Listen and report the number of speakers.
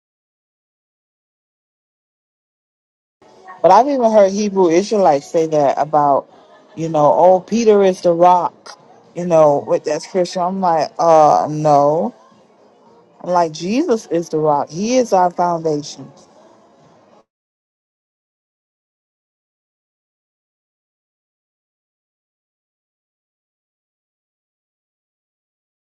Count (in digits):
1